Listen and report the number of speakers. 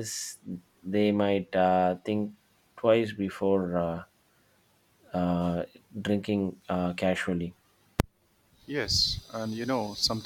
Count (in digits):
2